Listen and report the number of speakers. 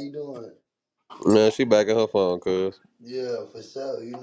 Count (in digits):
2